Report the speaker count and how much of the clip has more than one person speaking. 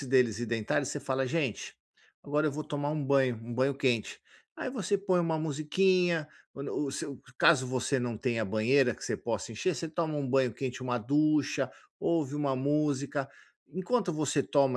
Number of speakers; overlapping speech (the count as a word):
one, no overlap